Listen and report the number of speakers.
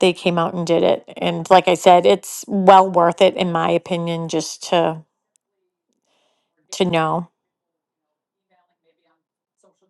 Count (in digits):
1